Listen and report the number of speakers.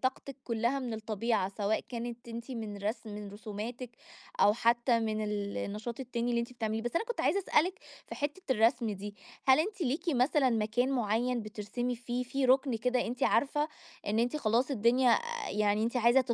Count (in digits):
1